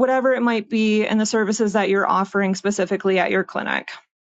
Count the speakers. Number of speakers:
one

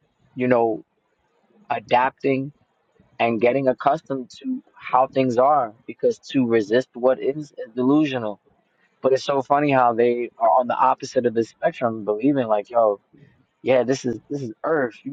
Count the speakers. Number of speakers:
one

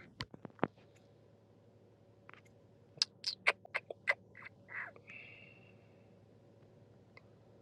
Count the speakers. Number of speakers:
zero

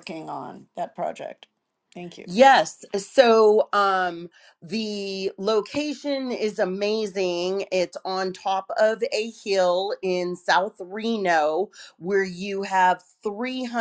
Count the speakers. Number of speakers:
two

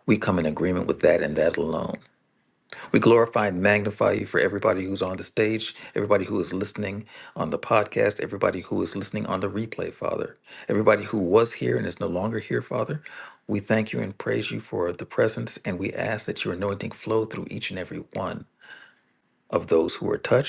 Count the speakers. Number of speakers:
one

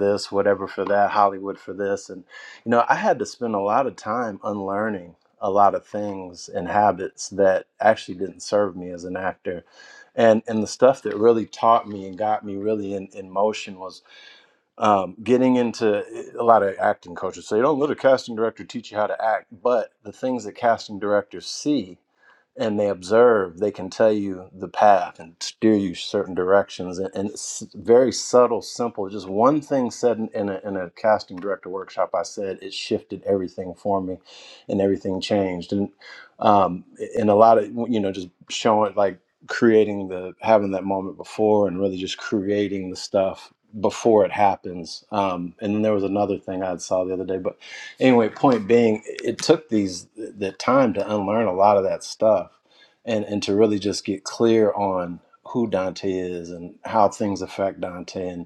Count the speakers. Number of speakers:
one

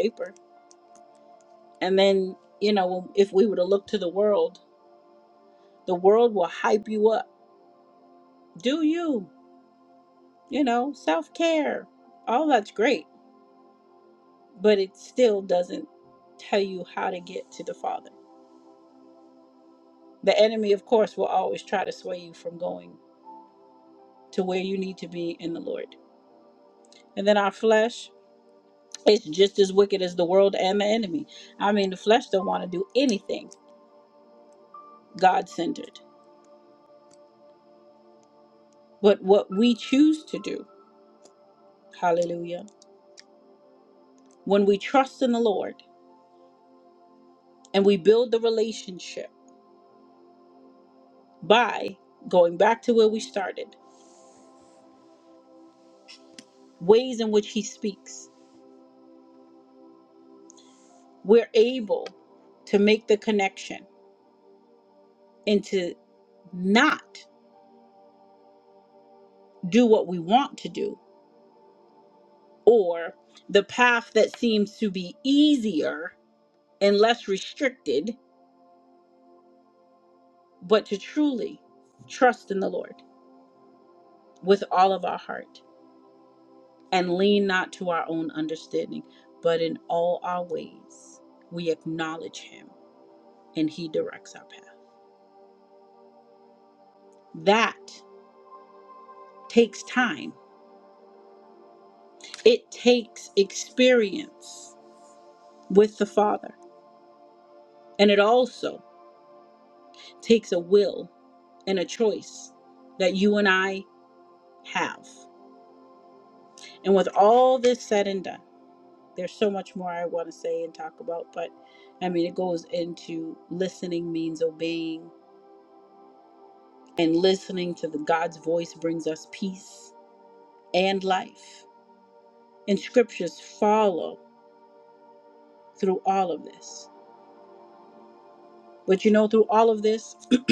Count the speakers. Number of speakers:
one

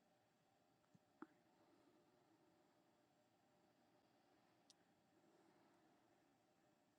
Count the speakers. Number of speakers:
zero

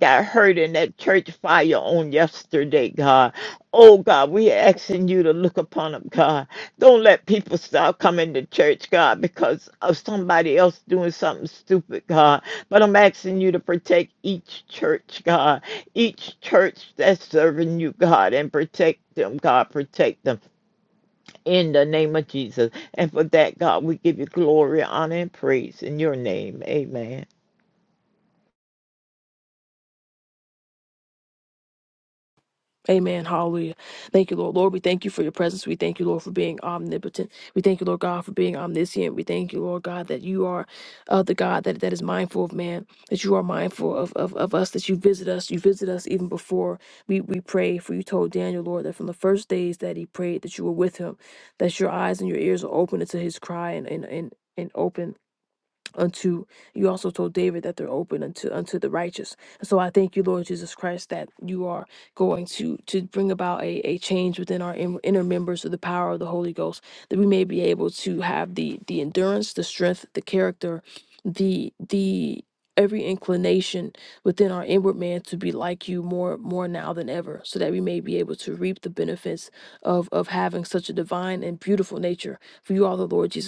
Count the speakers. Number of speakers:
two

